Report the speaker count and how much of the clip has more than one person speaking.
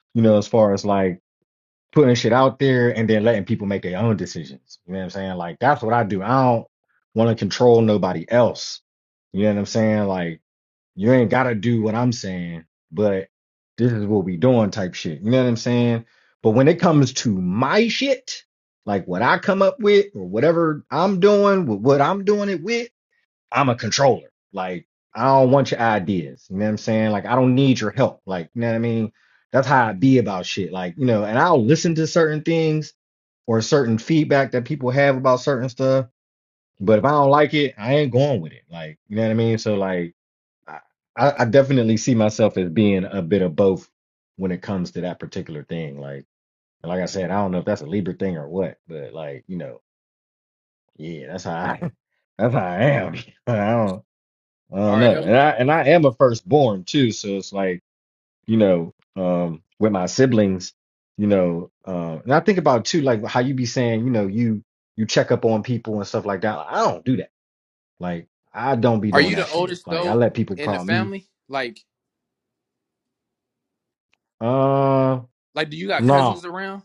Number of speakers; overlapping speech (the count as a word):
two, about 3%